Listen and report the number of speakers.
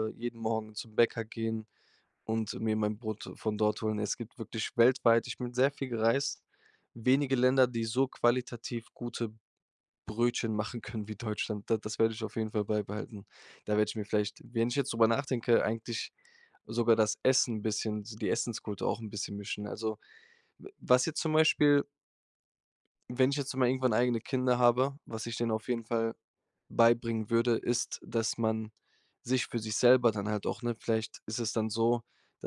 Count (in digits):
1